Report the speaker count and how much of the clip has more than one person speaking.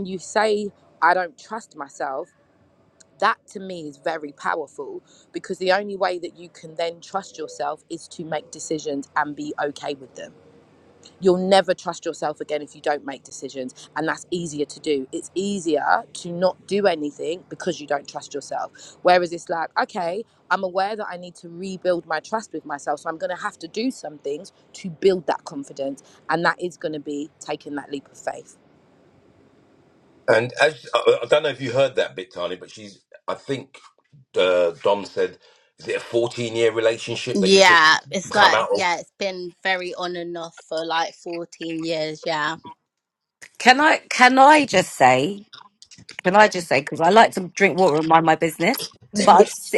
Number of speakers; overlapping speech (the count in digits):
4, about 2%